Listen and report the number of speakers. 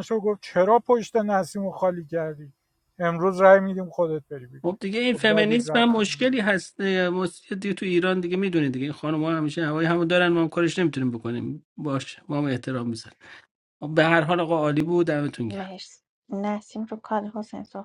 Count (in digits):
3